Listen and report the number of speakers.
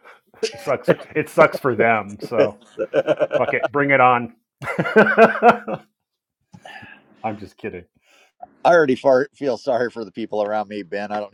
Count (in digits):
2